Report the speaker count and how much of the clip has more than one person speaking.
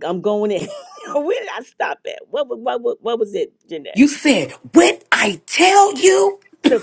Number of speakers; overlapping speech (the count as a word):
two, about 1%